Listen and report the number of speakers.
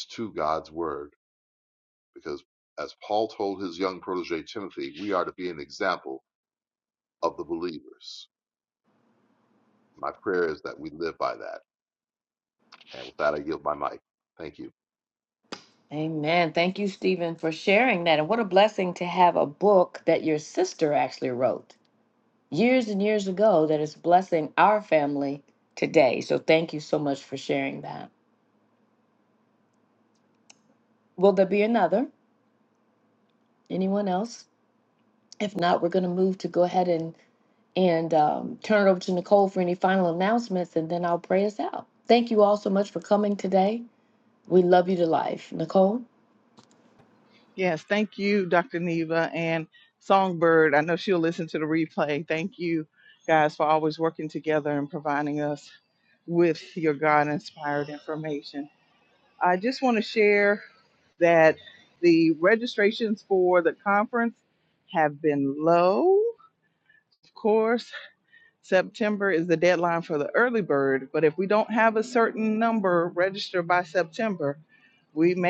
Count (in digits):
3